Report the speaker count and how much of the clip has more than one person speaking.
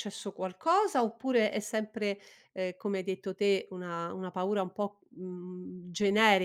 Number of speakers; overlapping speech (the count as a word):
one, no overlap